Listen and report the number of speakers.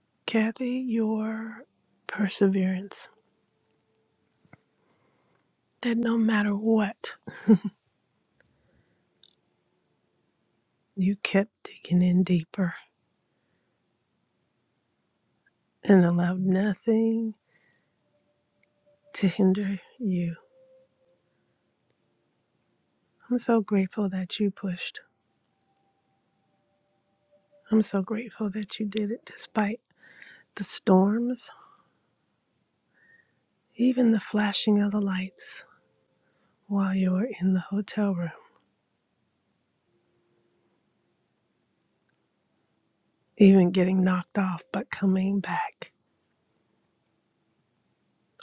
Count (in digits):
1